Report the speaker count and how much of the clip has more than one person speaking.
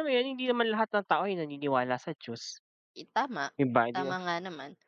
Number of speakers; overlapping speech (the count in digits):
2, no overlap